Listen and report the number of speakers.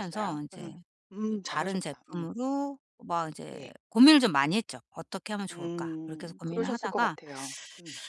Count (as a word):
two